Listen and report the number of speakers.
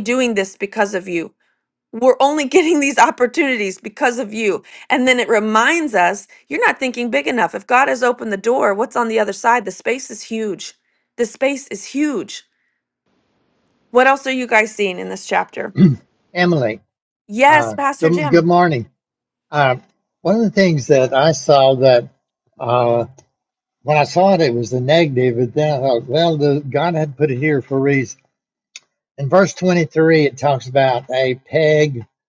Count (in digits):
2